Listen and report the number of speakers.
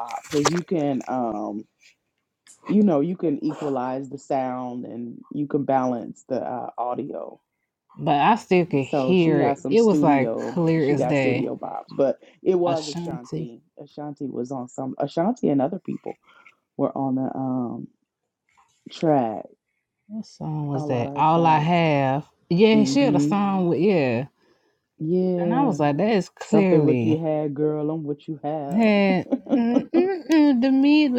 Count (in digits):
2